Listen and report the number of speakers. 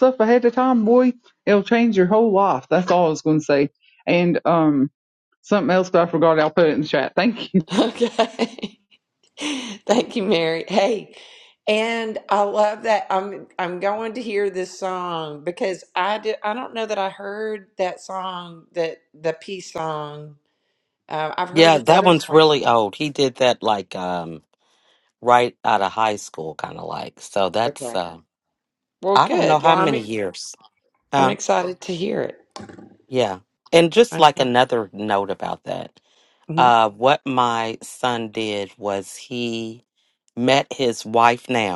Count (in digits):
3